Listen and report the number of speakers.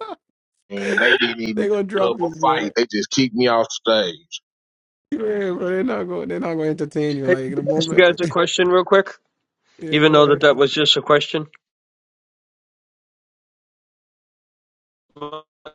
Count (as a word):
three